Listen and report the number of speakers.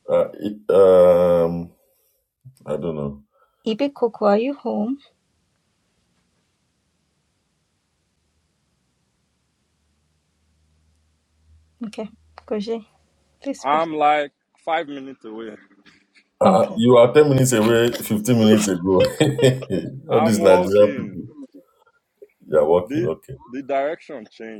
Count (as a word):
three